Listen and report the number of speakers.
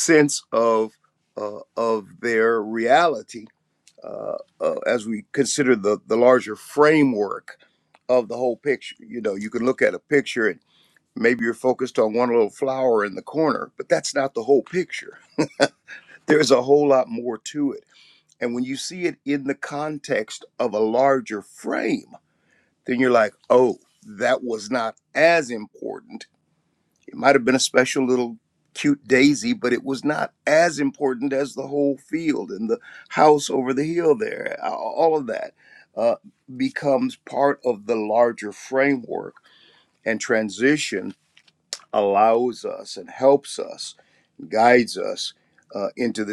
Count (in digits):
1